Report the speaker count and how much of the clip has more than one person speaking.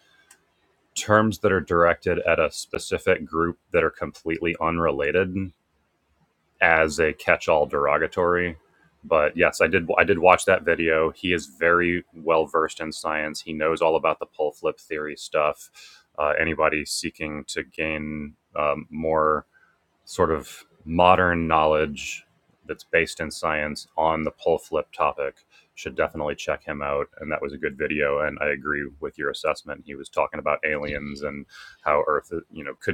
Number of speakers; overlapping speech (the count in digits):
1, no overlap